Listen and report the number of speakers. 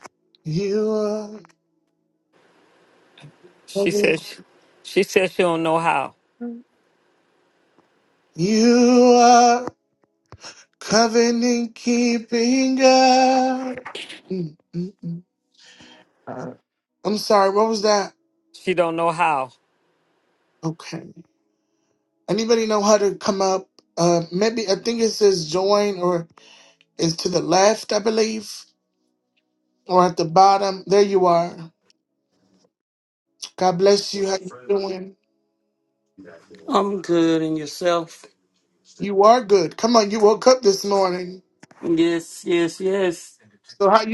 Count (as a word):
three